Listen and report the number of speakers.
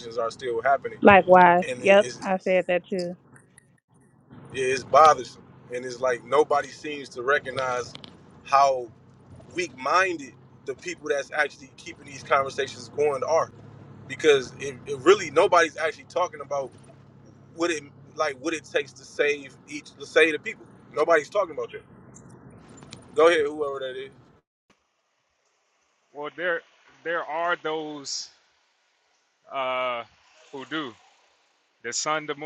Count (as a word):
three